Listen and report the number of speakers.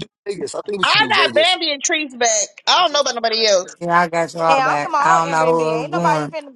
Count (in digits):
4